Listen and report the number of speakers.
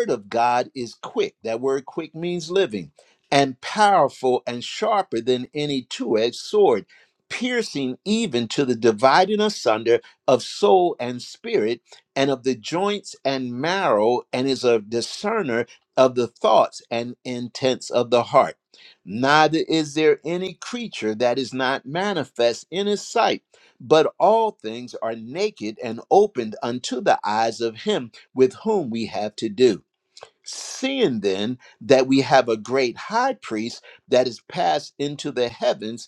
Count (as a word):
one